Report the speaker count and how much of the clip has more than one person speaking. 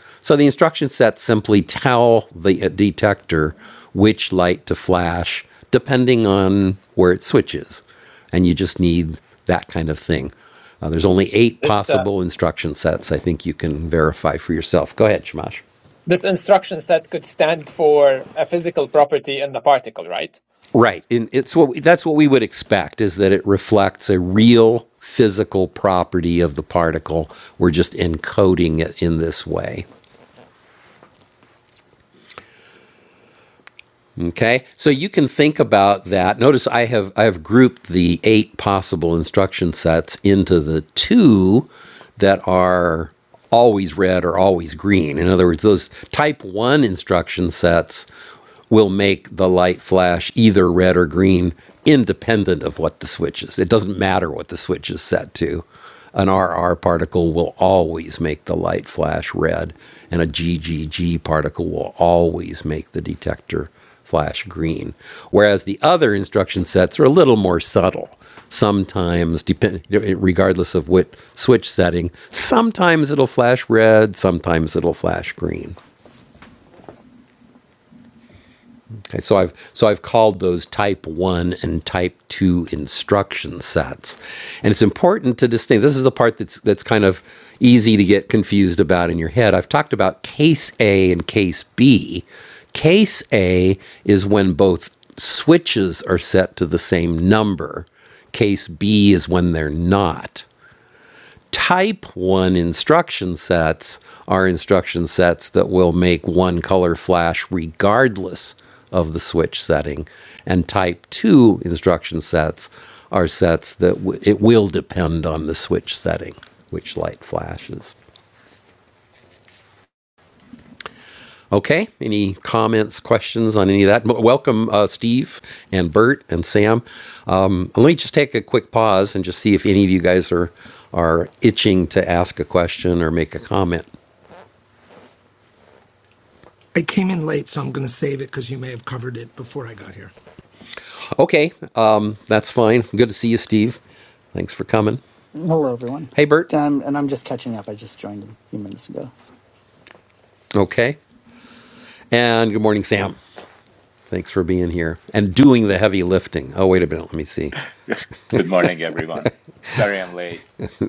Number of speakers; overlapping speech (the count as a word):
five, under 1%